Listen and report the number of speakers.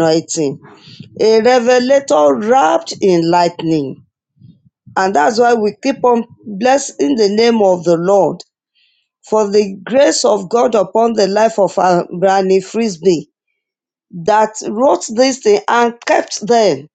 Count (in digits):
1